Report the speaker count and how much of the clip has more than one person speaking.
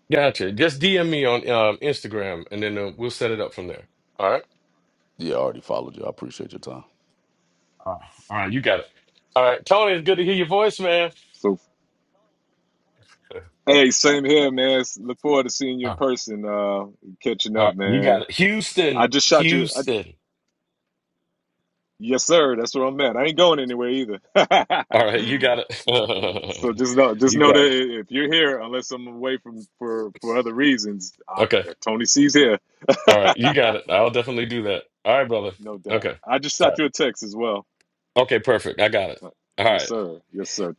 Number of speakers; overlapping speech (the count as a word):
three, about 7%